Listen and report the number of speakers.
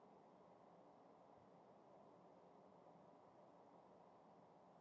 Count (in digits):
0